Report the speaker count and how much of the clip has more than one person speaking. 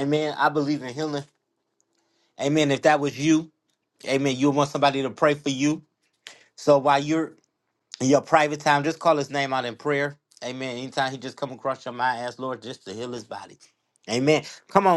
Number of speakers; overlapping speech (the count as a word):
one, no overlap